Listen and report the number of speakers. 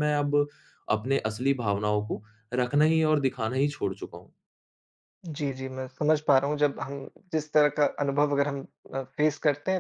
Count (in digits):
2